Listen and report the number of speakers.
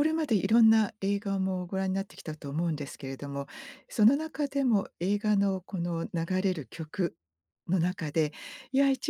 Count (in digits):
1